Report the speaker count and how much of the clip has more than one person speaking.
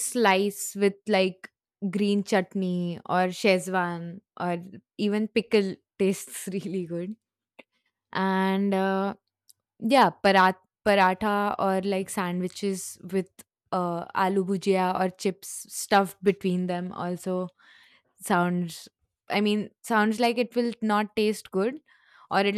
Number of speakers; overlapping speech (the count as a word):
one, no overlap